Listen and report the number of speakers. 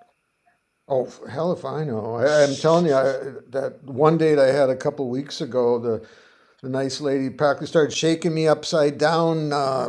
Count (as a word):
one